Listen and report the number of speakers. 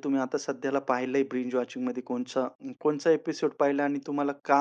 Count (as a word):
one